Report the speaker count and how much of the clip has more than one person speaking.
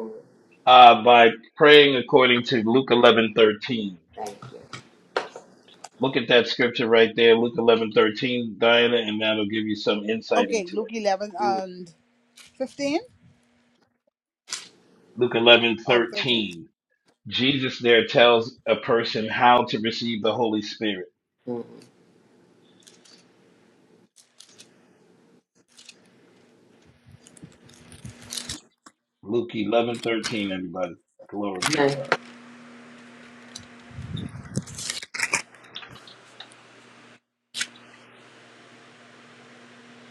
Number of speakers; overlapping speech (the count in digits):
3, about 4%